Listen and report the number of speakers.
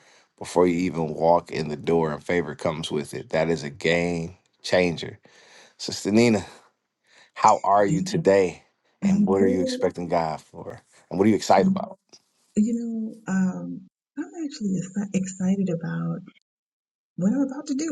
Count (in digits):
2